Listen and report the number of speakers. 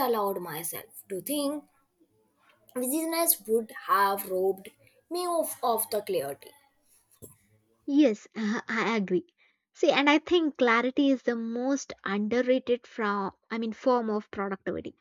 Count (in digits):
2